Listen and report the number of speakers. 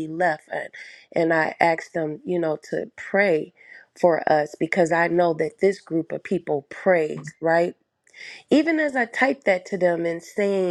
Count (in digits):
1